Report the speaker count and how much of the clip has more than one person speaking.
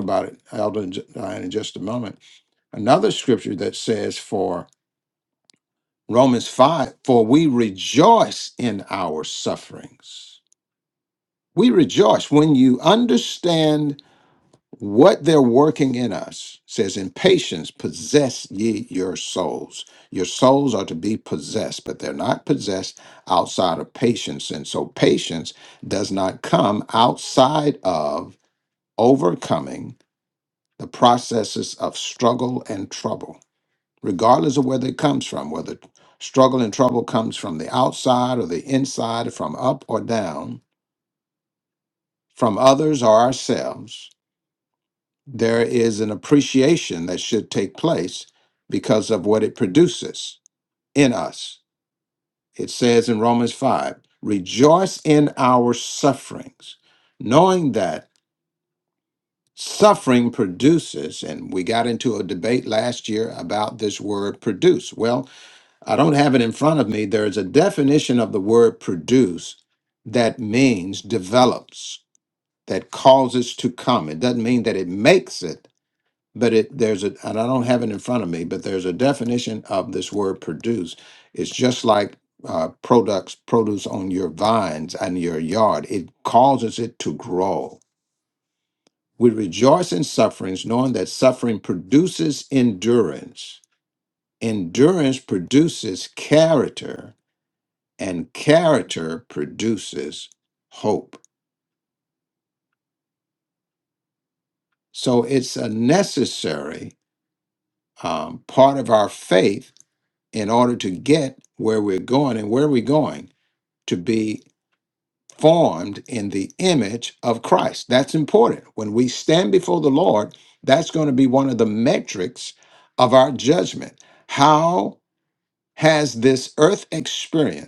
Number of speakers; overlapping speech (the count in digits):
1, no overlap